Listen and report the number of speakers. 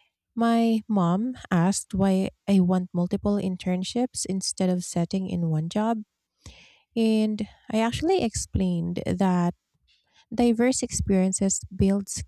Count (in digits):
1